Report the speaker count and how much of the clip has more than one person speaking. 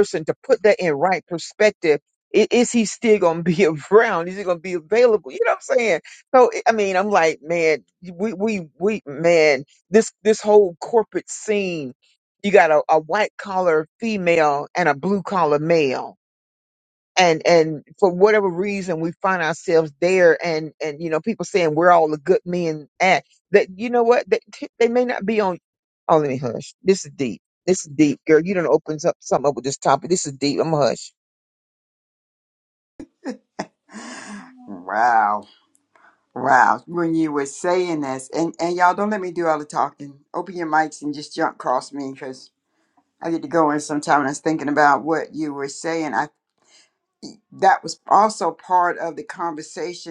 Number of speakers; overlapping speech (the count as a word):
two, no overlap